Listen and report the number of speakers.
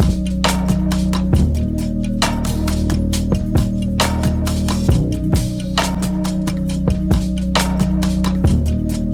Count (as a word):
zero